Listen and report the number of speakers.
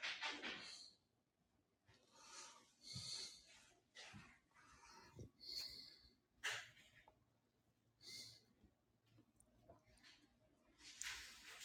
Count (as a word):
zero